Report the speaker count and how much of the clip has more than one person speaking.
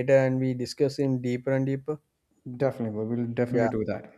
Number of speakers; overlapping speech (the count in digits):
2, about 5%